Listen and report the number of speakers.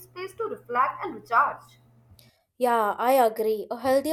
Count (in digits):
2